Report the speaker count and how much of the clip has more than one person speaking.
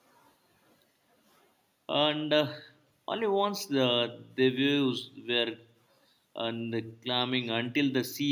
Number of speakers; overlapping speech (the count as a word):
one, no overlap